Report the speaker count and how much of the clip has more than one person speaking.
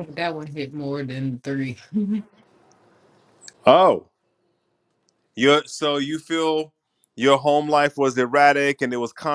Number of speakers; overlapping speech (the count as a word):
two, no overlap